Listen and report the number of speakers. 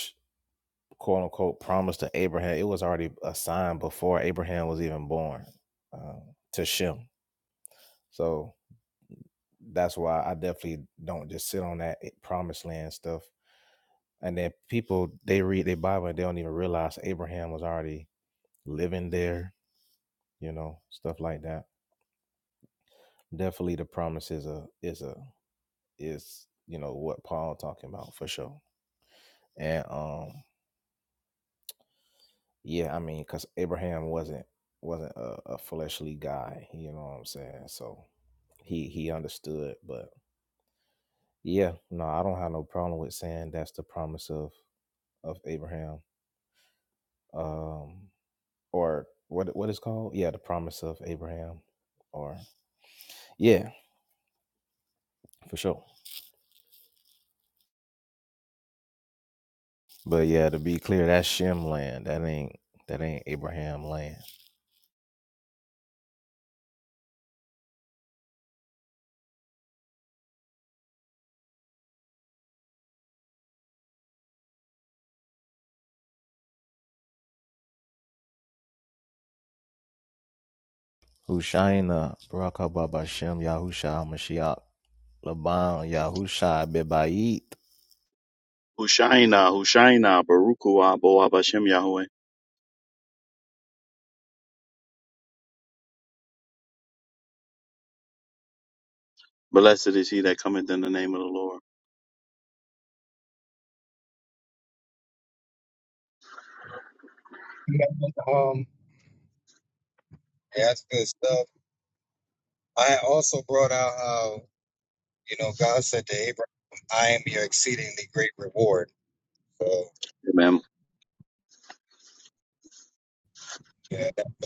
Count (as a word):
three